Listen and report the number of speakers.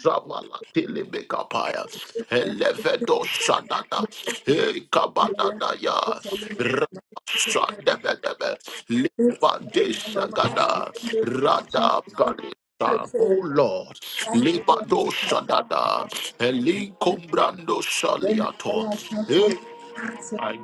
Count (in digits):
2